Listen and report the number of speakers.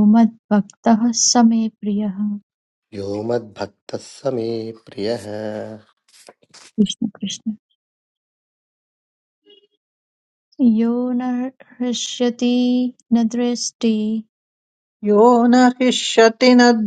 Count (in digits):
3